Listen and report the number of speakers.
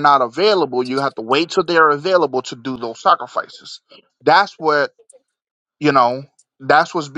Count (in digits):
1